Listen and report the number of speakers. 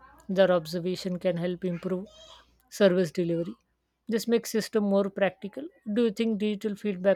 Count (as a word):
one